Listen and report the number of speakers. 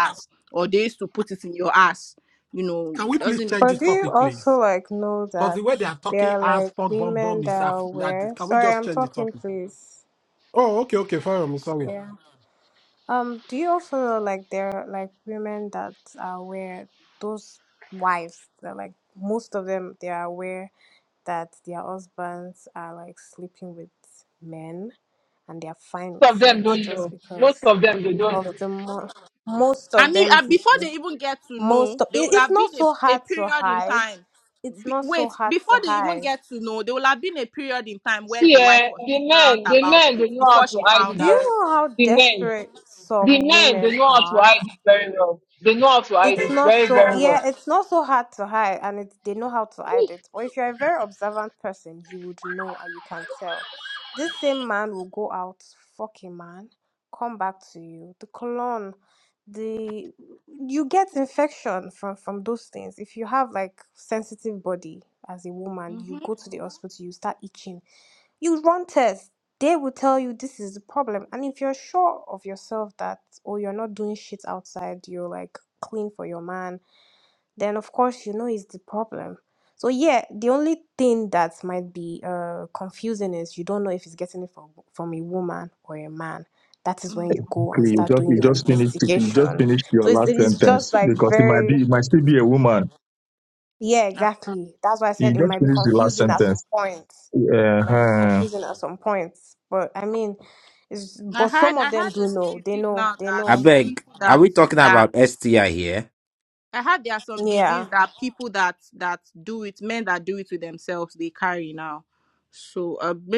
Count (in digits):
6